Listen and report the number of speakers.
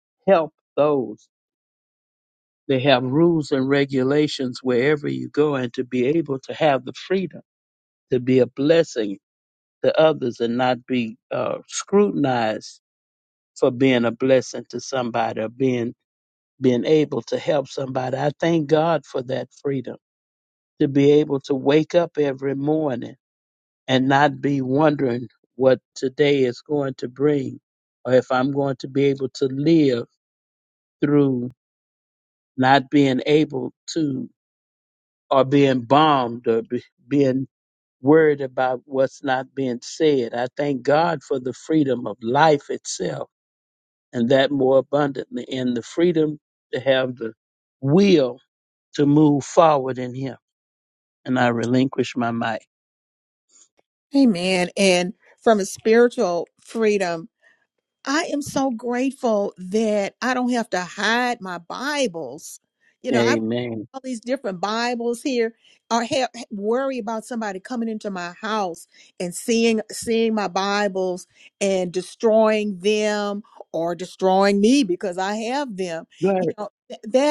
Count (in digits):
2